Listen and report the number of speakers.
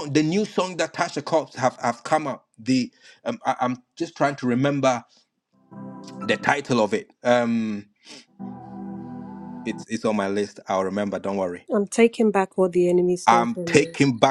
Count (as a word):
two